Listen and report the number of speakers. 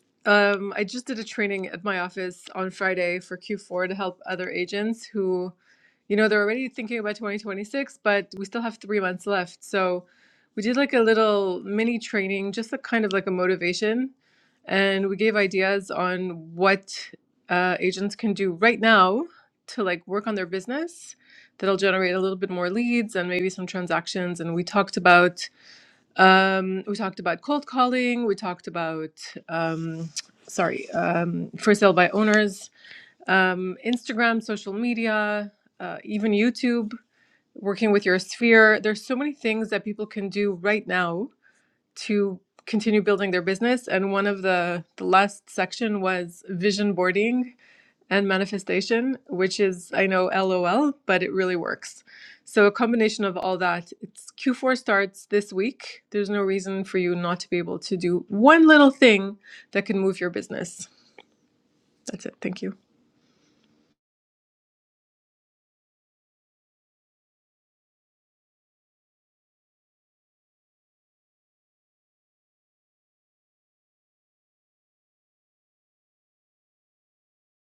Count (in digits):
1